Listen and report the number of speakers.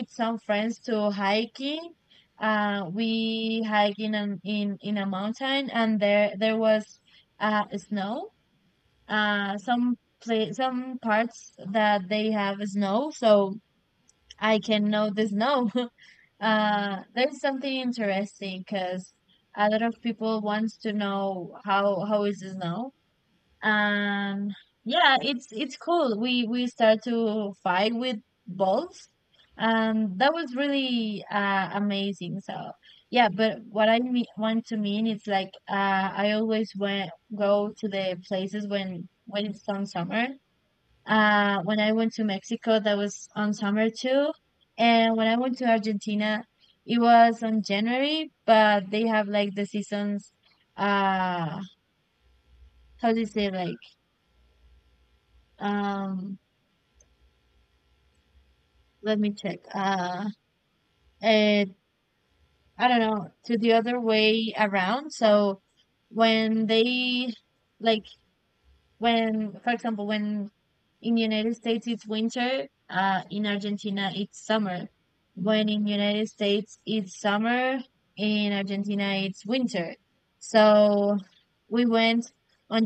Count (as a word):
one